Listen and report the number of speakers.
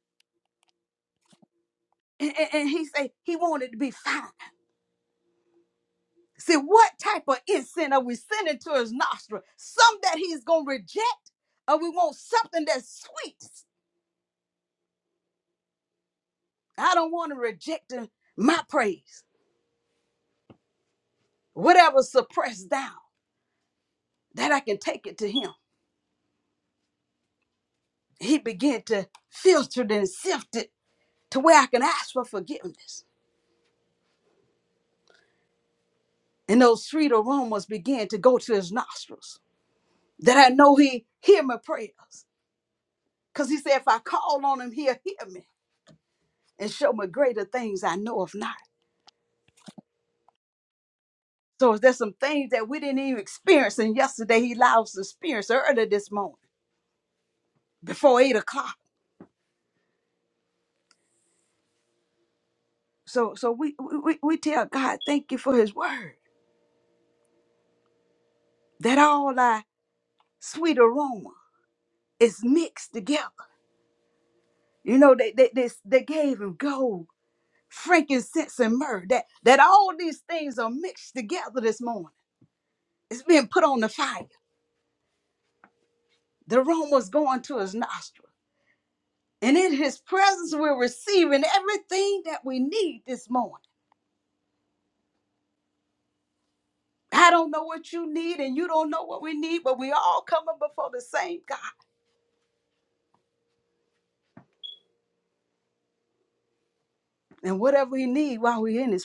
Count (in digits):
1